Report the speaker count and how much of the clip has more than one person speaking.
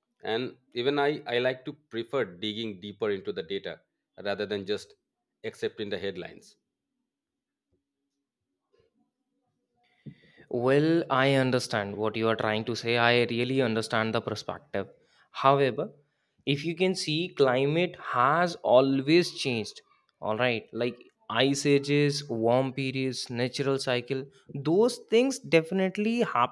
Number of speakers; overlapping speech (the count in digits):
2, no overlap